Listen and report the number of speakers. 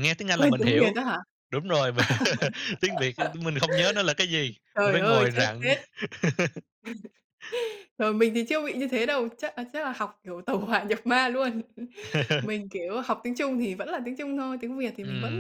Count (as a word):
two